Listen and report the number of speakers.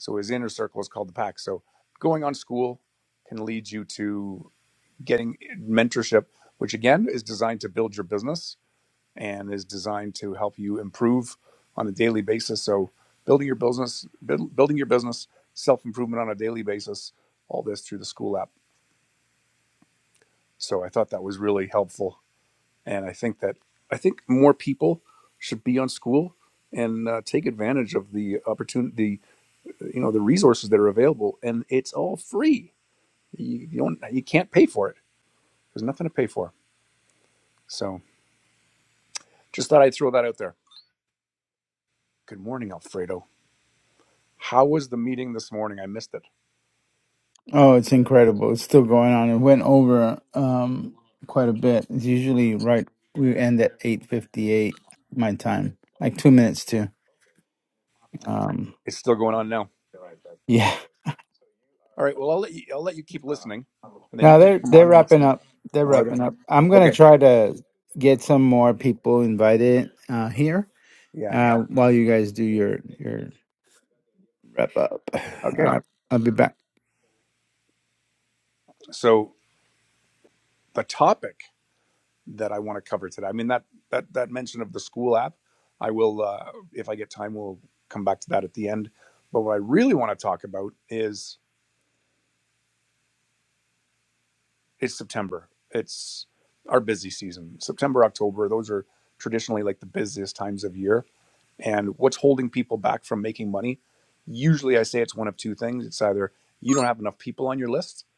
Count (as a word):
two